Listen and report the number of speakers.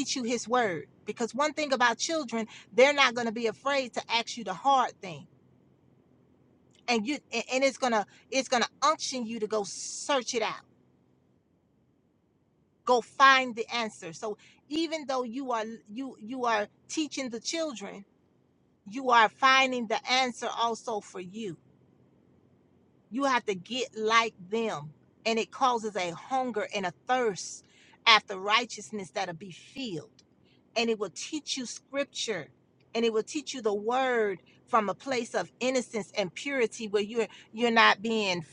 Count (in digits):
1